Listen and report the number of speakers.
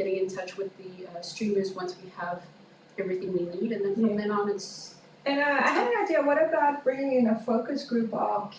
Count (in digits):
2